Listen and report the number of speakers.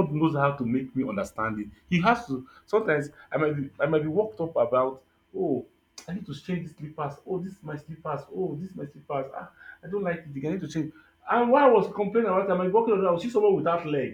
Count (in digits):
1